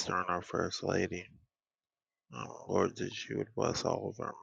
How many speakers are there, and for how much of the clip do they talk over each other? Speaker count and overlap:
one, no overlap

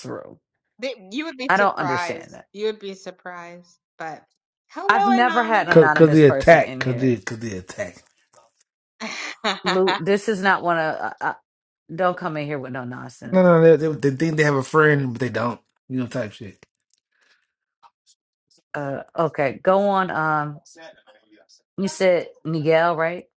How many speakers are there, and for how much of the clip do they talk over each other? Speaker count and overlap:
three, about 13%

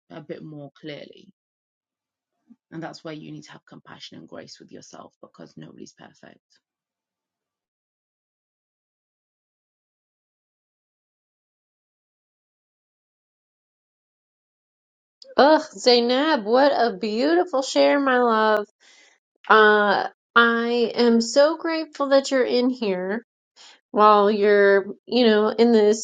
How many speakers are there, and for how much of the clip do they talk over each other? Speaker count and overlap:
two, no overlap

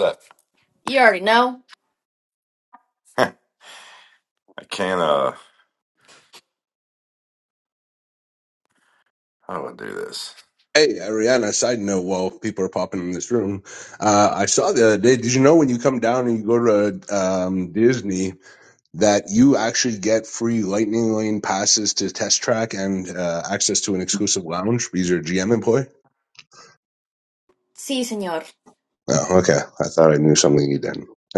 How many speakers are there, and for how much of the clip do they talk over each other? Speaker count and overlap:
three, no overlap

